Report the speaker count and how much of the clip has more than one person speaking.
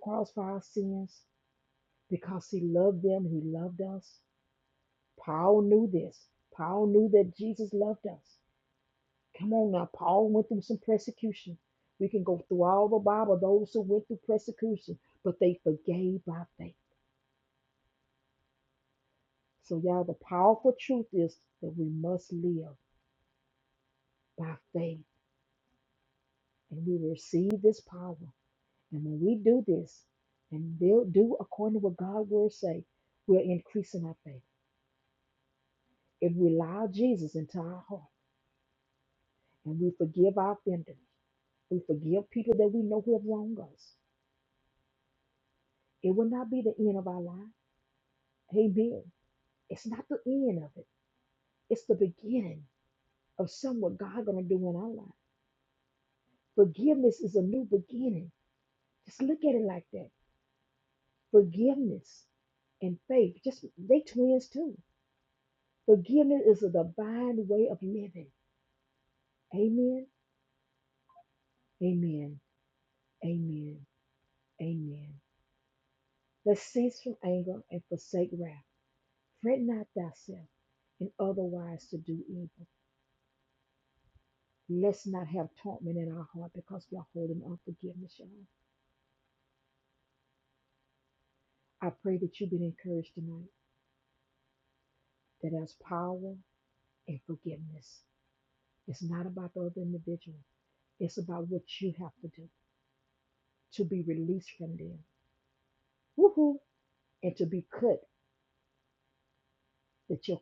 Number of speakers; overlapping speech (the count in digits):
1, no overlap